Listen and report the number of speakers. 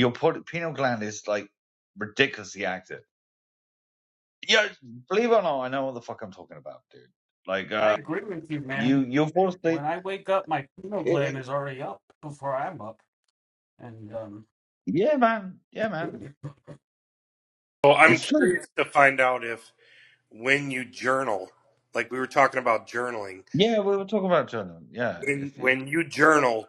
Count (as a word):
three